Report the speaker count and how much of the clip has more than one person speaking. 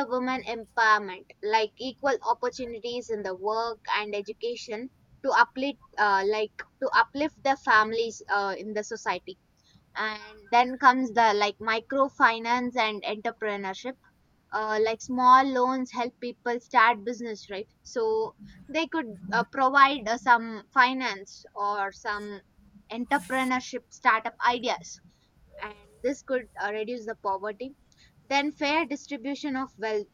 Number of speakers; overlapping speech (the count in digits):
1, no overlap